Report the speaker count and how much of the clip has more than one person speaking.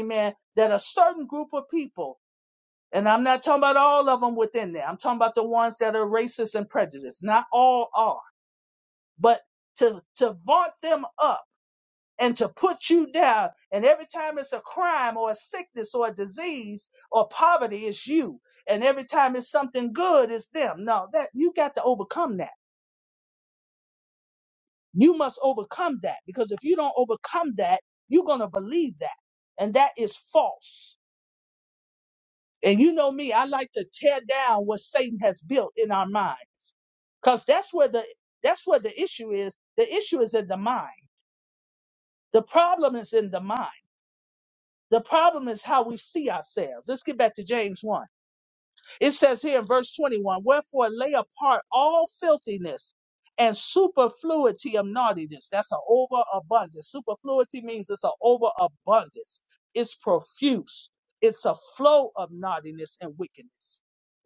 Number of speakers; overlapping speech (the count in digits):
1, no overlap